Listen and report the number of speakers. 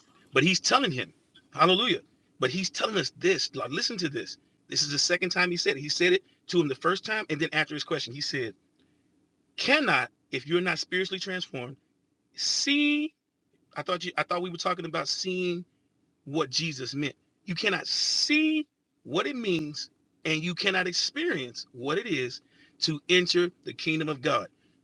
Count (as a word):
one